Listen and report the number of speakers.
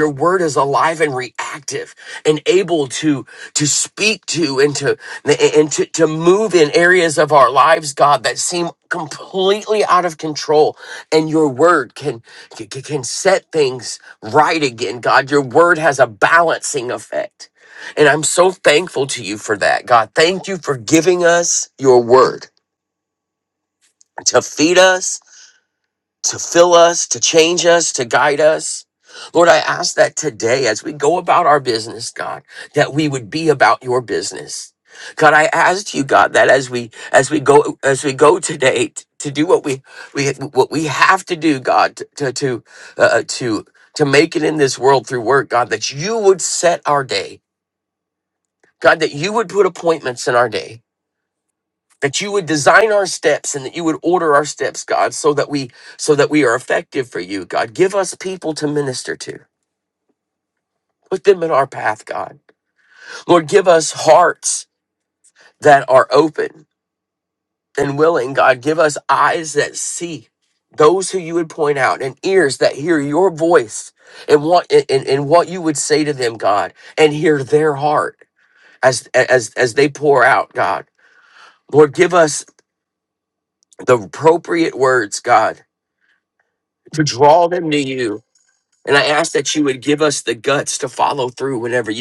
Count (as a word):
one